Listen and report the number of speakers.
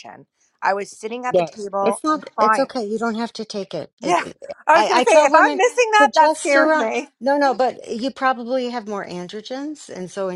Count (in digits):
2